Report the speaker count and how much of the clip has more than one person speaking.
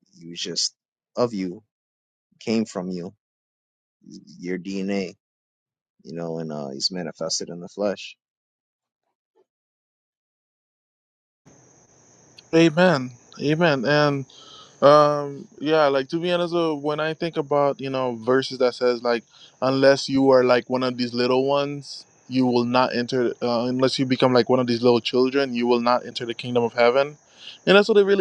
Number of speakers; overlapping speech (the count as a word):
two, no overlap